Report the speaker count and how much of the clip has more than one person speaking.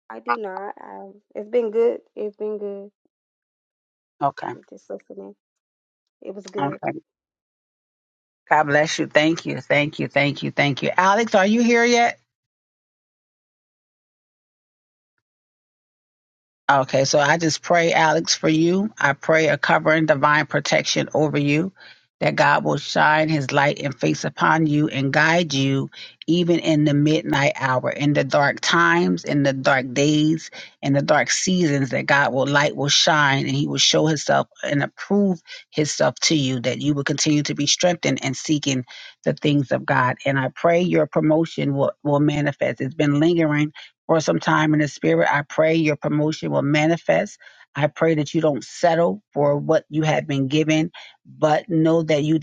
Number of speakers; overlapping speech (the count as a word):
two, under 1%